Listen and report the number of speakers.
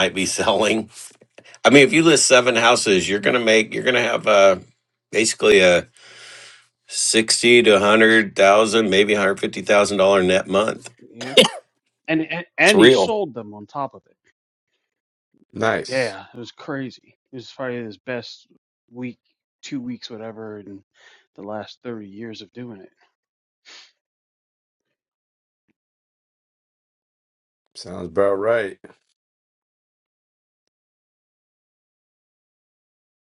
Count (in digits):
3